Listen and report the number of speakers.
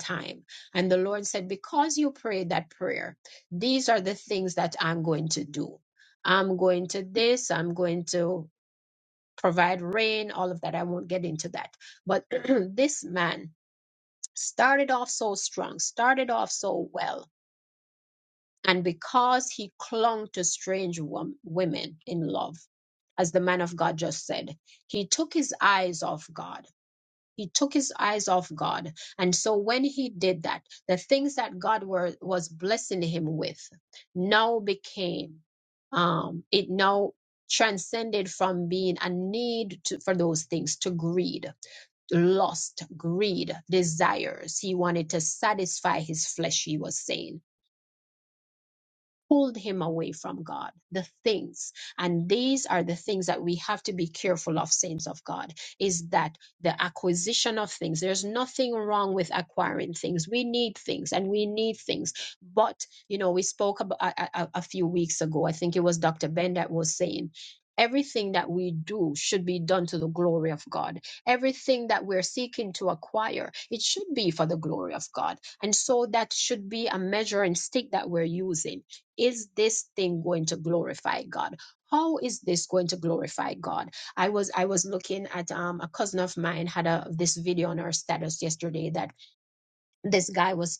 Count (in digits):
1